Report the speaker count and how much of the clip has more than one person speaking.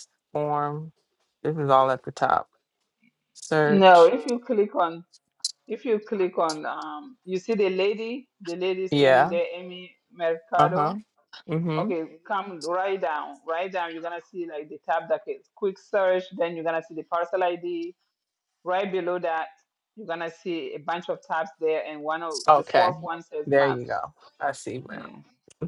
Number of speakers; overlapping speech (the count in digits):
2, about 9%